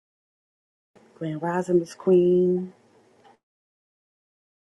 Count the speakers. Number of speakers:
one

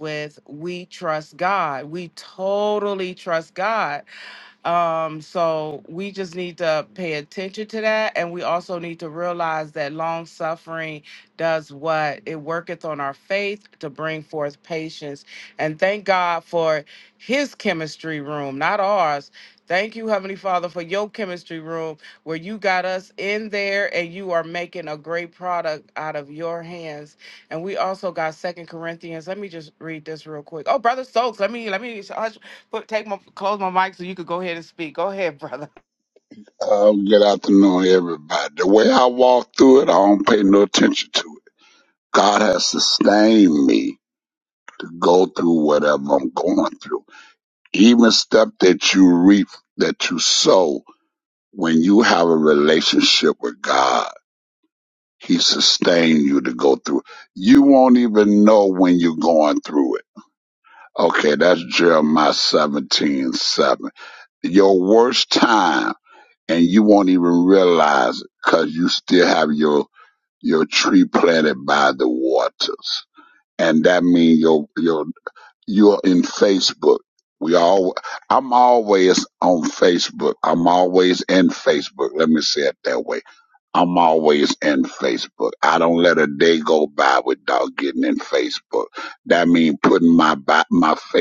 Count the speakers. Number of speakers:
two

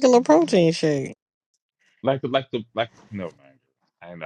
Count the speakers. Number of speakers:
two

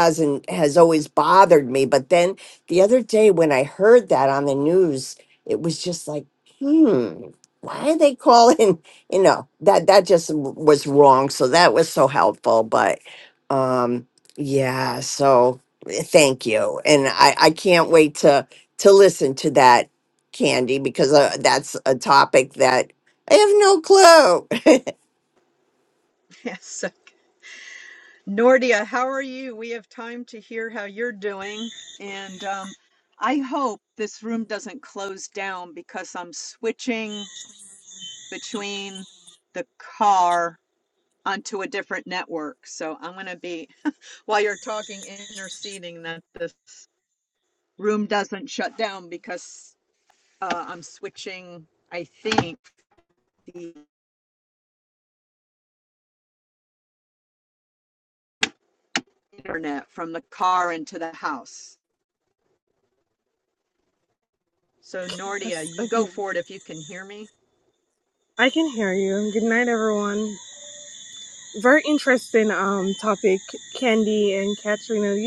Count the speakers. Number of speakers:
three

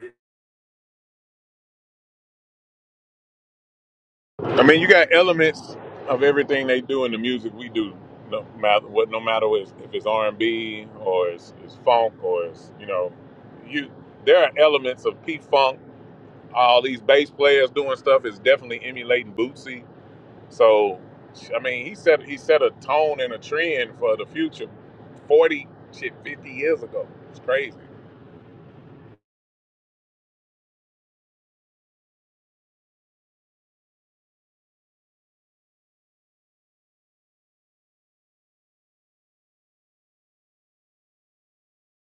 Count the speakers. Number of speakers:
one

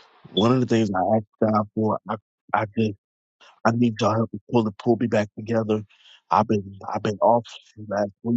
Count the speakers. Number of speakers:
one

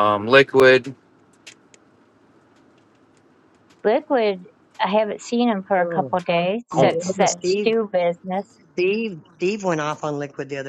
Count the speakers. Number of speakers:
three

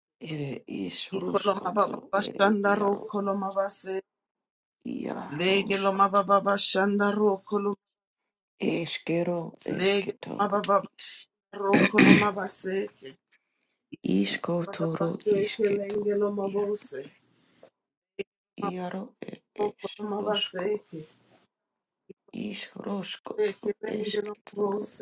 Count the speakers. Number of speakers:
two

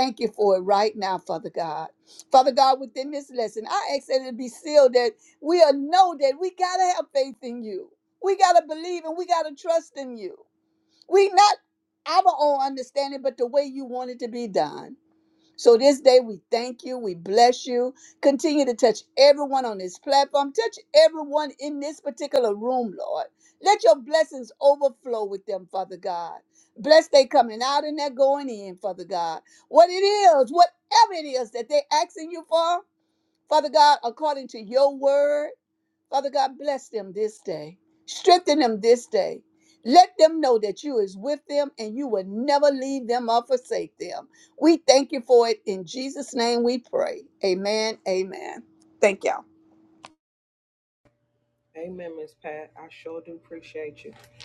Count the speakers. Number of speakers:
two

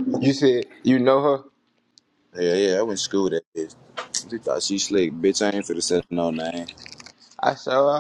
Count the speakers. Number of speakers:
two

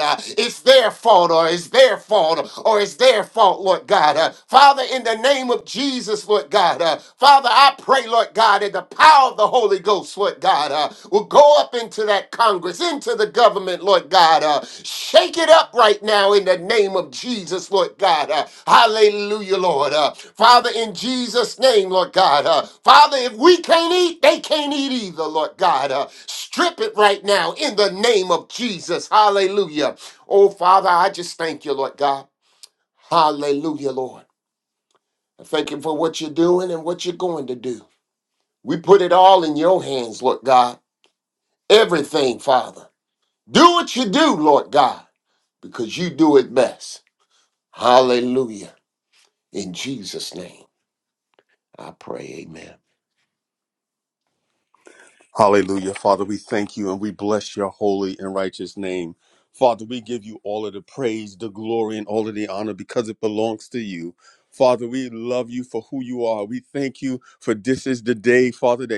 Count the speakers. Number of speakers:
two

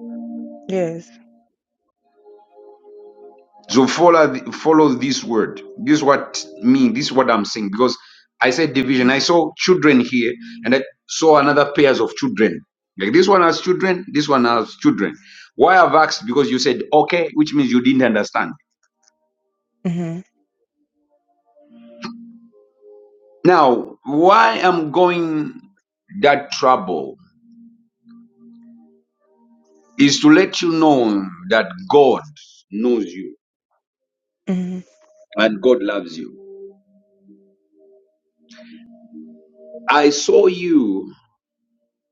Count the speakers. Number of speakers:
two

